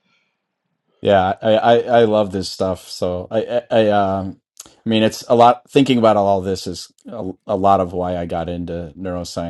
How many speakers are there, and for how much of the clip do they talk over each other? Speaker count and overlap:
1, no overlap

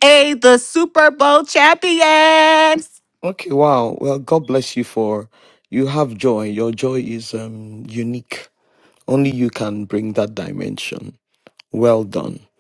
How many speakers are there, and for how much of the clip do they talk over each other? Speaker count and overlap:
2, no overlap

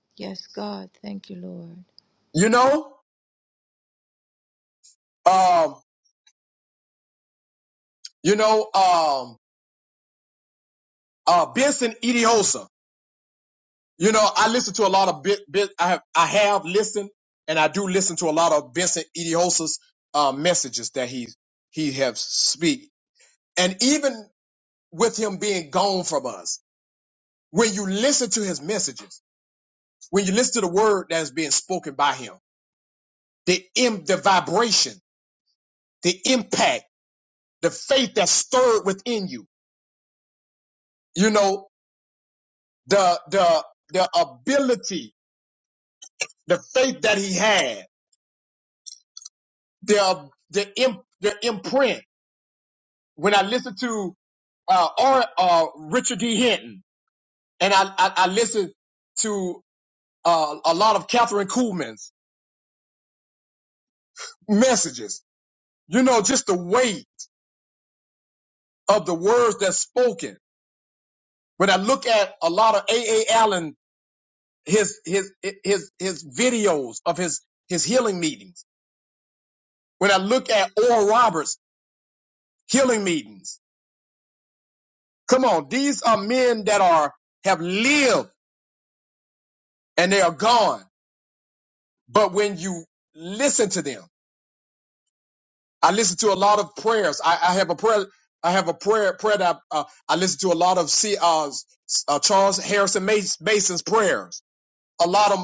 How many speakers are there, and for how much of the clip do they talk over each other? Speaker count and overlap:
2, no overlap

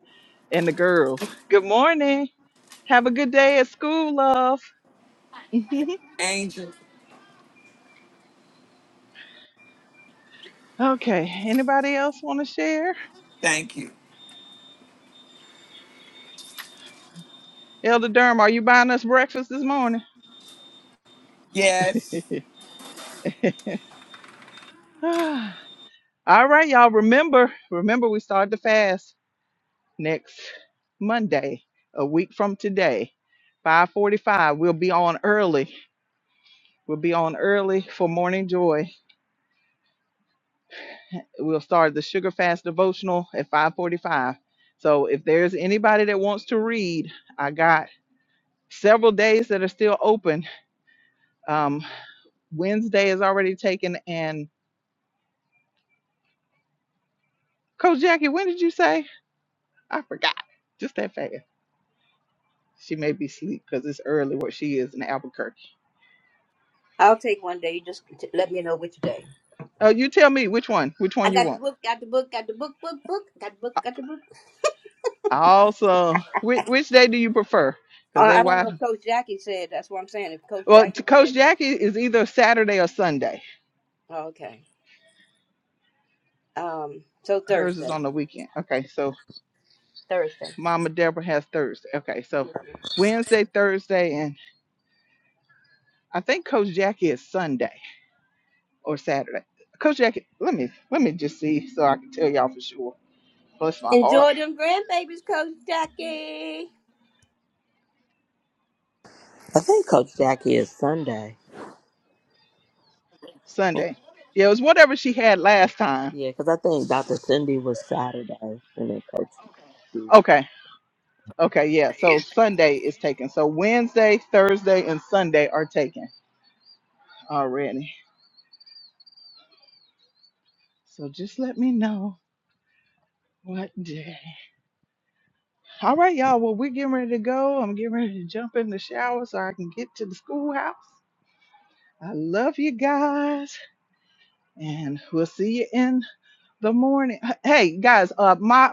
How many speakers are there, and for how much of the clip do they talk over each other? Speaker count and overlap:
4, about 2%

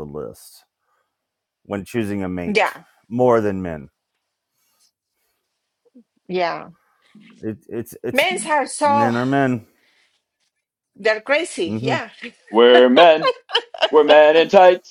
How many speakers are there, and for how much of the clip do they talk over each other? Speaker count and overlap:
3, about 5%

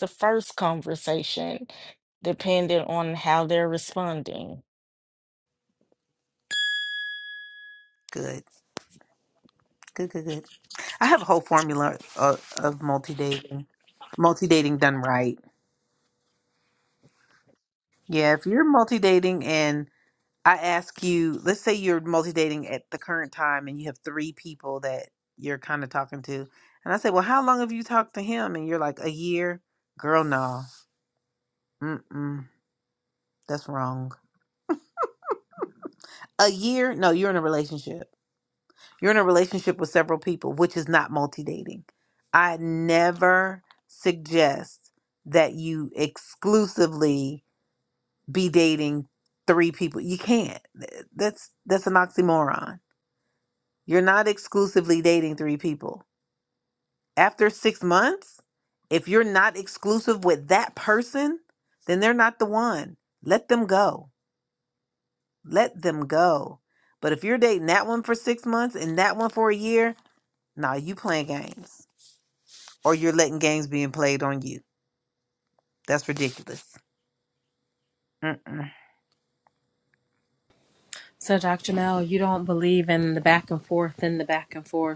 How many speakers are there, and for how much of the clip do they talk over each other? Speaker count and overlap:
3, no overlap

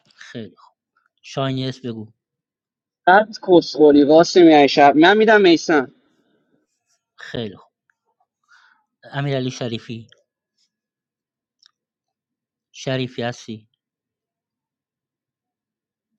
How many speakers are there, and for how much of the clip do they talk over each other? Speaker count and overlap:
2, no overlap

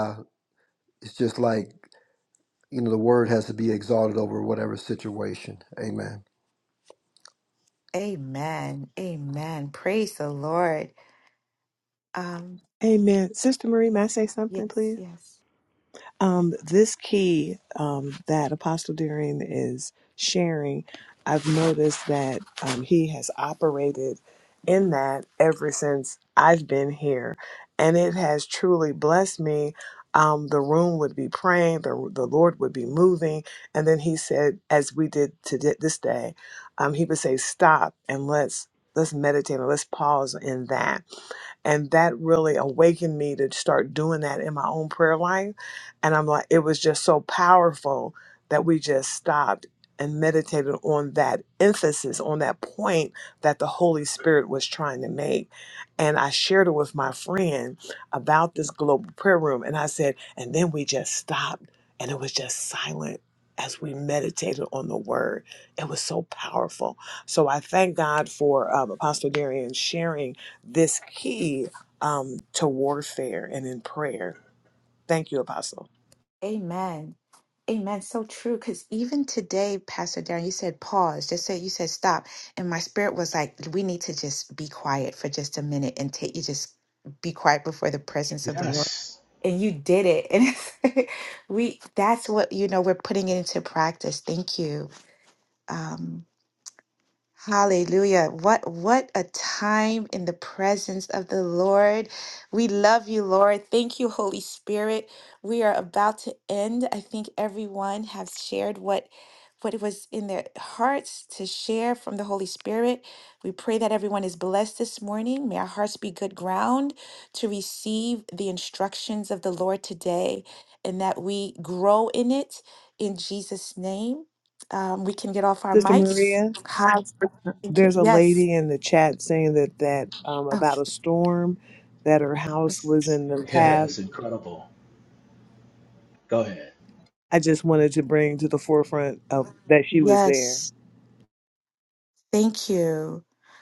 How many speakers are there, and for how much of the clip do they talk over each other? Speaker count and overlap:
4, about 1%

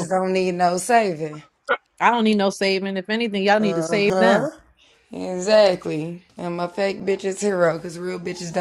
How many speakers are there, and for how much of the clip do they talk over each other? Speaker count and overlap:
2, about 11%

